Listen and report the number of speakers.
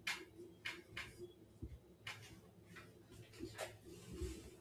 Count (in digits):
0